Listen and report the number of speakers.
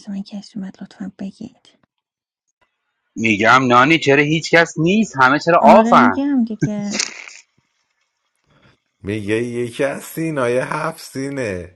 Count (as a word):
three